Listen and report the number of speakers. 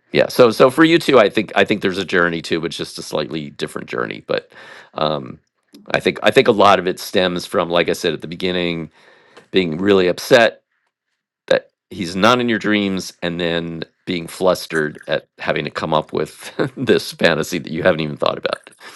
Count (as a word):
one